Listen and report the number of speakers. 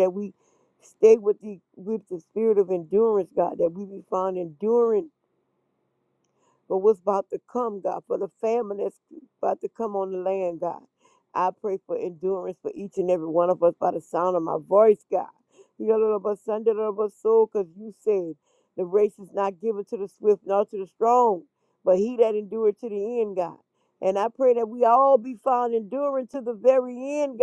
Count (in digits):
1